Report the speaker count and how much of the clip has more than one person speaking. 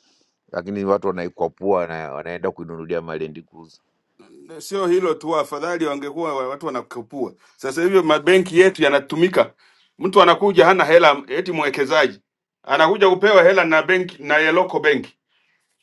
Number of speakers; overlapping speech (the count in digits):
2, no overlap